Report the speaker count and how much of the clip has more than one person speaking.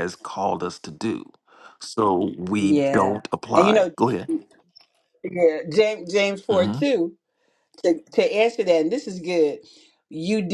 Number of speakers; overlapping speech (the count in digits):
2, about 13%